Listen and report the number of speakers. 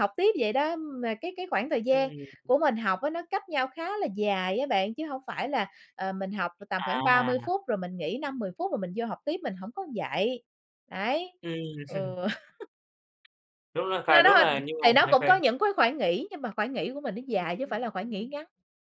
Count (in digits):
2